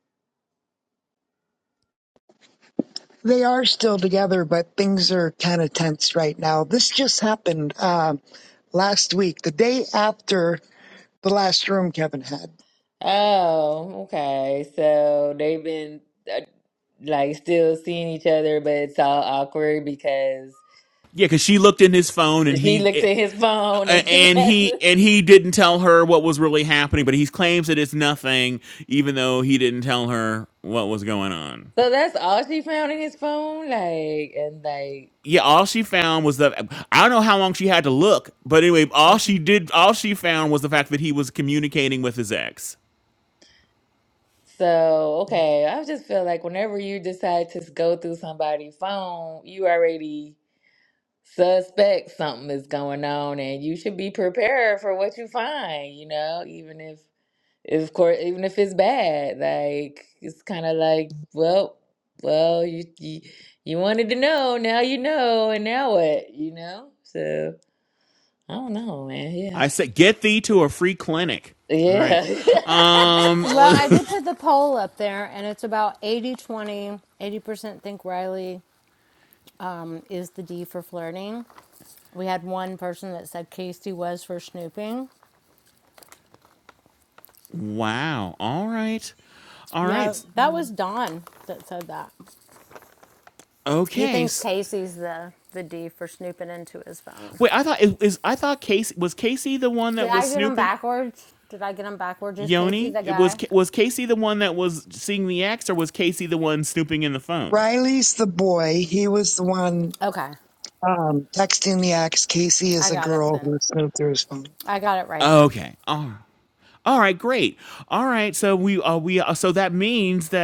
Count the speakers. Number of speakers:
four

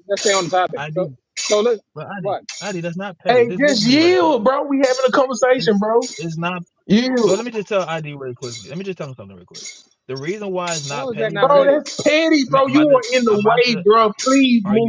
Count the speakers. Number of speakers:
three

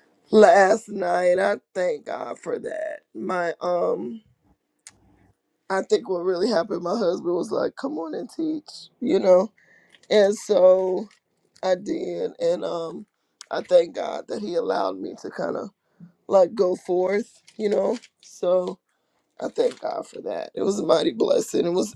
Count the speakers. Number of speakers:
one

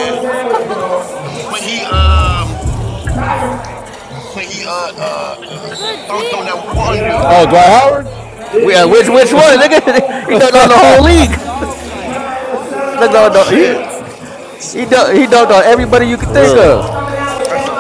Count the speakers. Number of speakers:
three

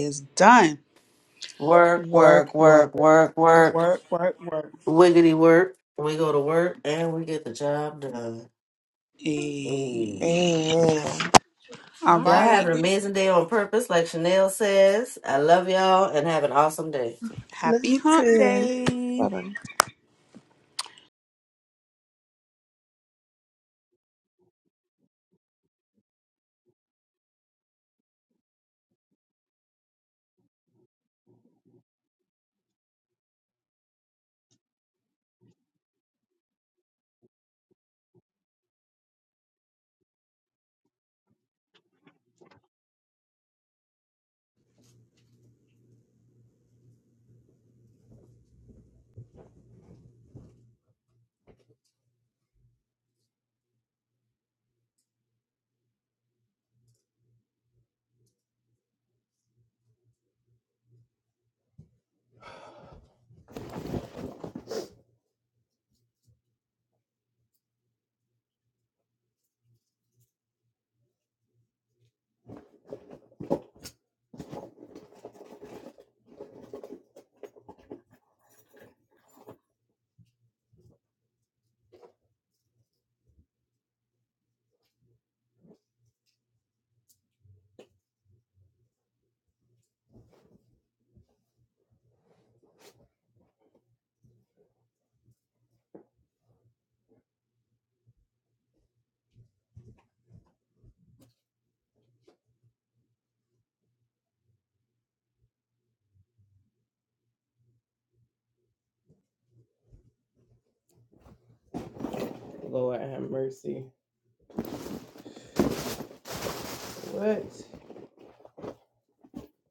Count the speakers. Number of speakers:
four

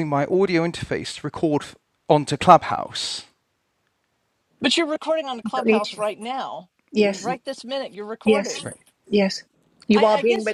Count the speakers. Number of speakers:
three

